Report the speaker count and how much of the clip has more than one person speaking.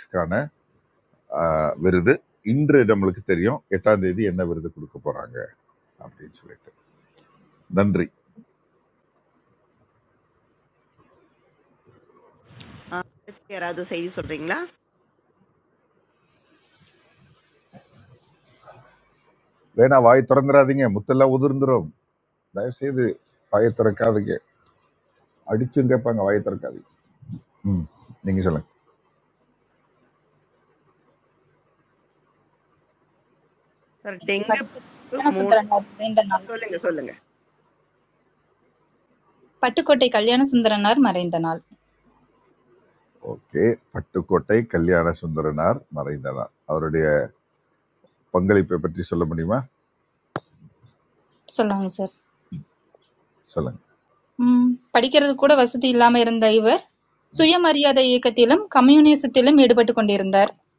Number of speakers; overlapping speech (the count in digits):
3, about 1%